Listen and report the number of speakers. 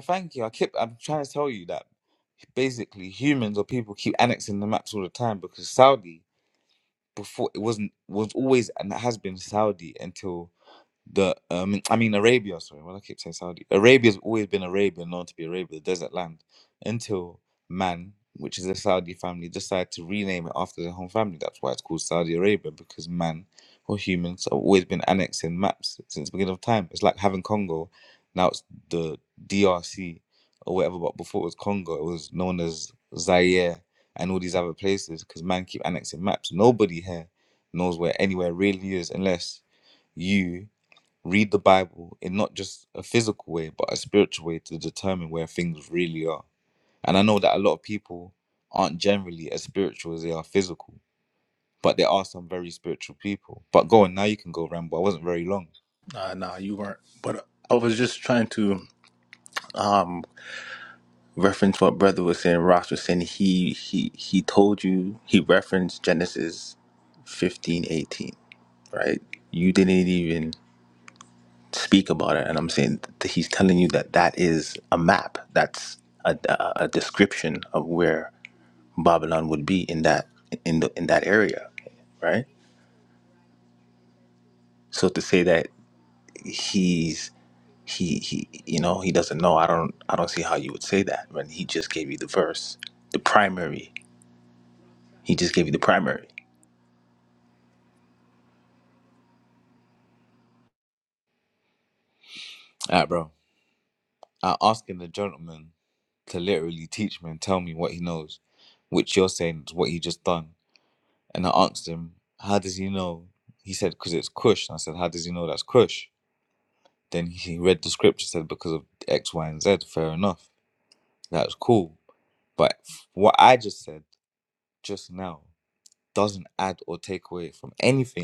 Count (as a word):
two